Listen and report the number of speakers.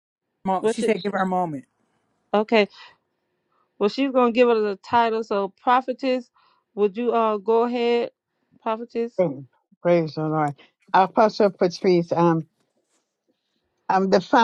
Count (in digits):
3